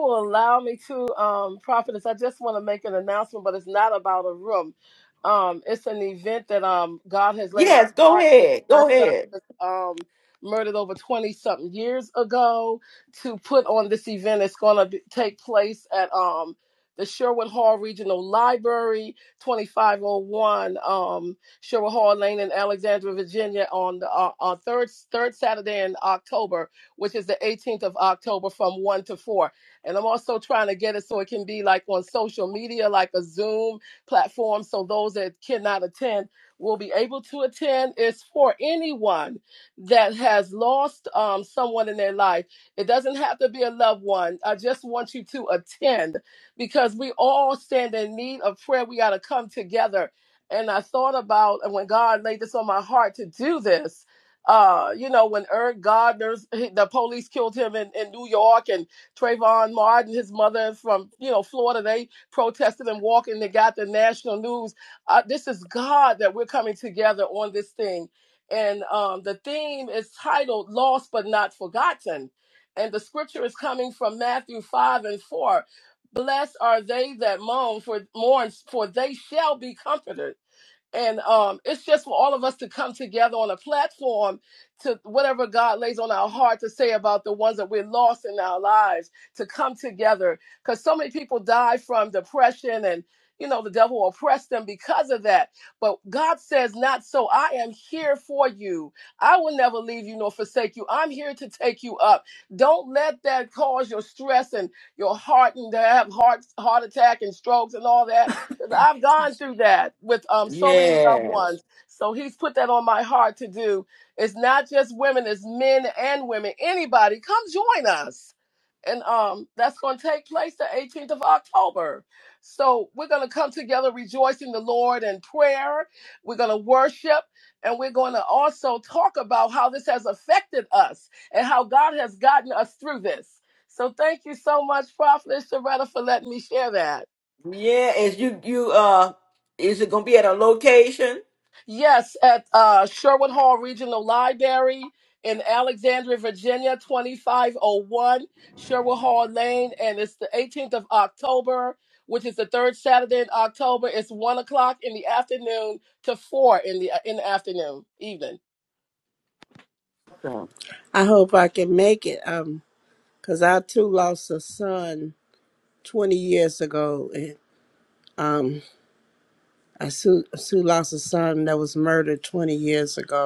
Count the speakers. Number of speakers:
3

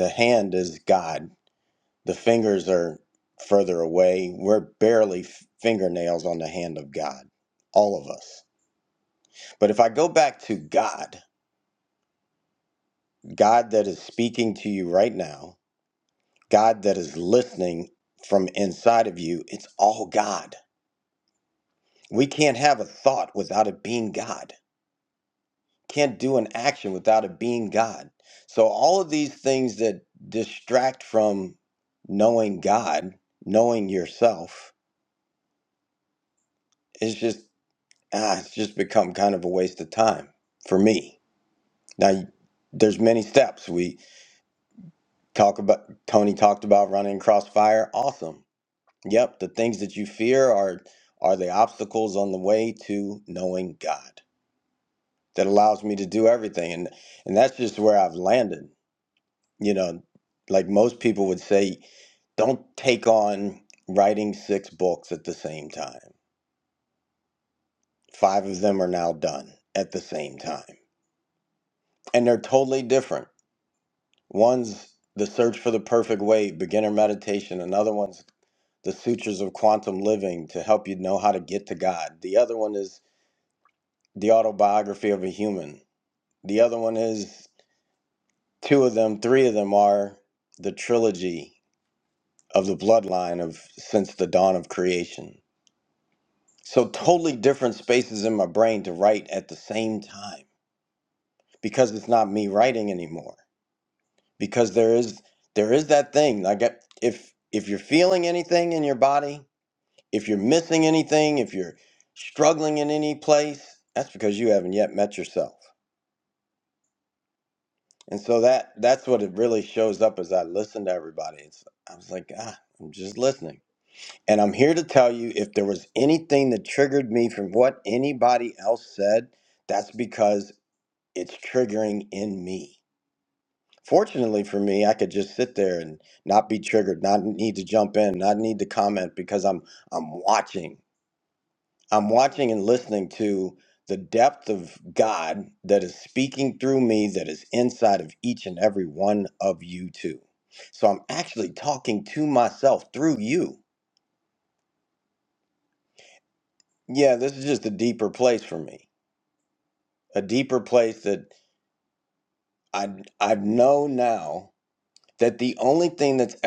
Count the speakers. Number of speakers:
1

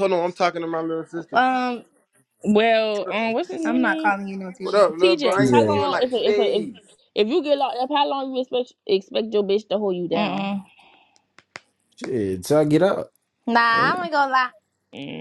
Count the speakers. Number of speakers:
4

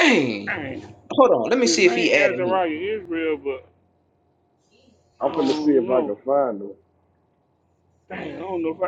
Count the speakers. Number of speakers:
3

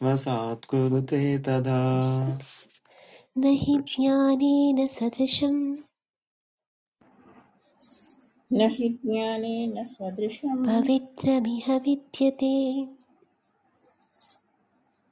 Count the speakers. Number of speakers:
3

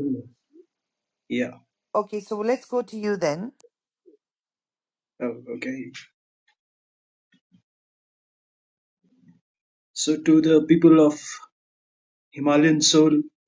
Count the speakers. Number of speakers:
2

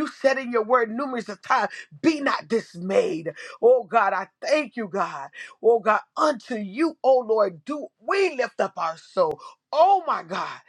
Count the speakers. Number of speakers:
1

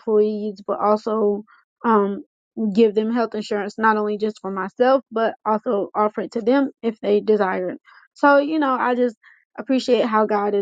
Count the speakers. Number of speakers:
1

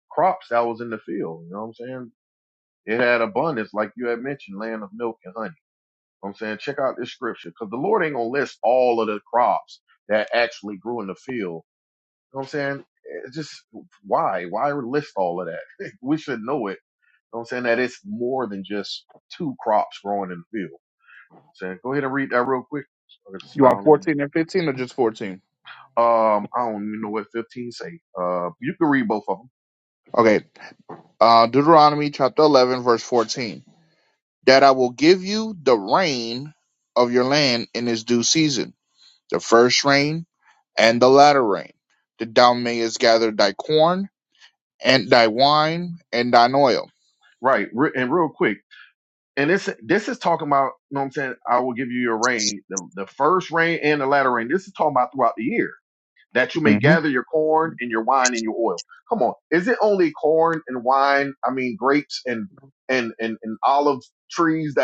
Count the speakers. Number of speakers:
2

